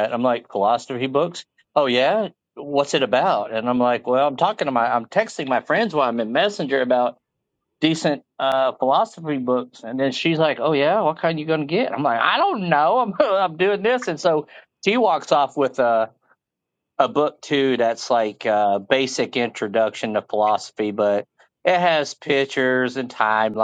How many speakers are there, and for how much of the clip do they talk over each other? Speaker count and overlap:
1, no overlap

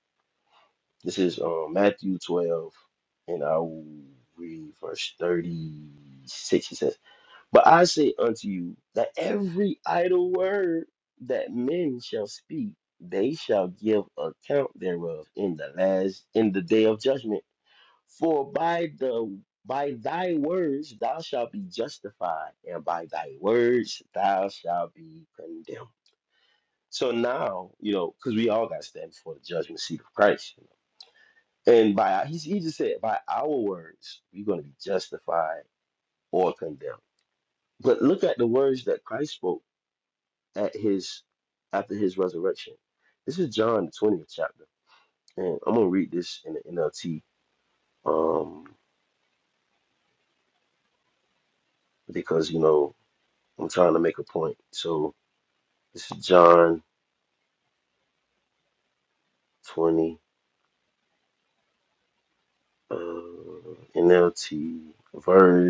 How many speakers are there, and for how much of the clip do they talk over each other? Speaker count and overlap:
1, no overlap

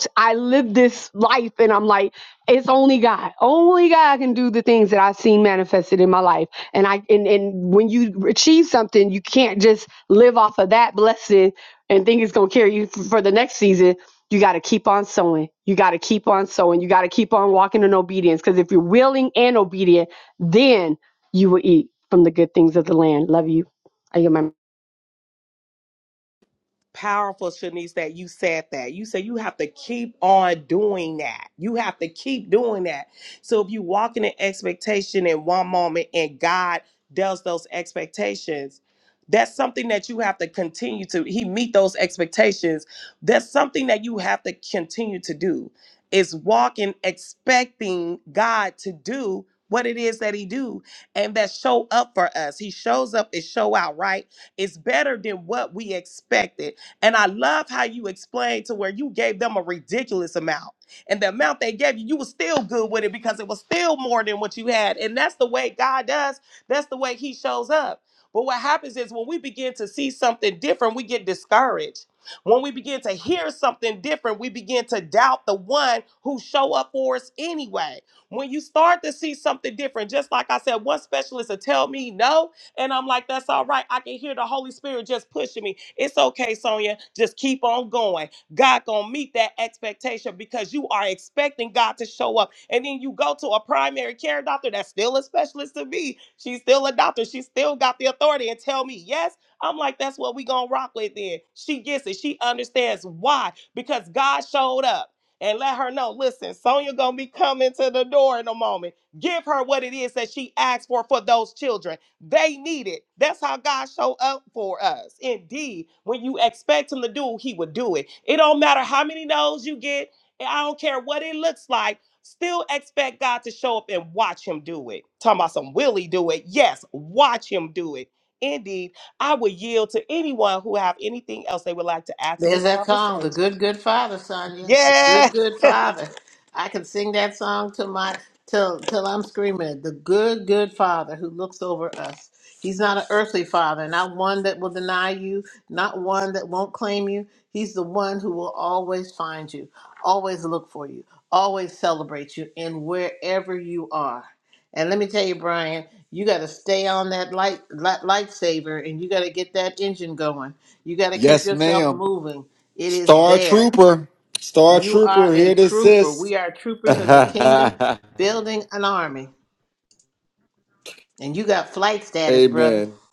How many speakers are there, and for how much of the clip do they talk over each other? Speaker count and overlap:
4, about 3%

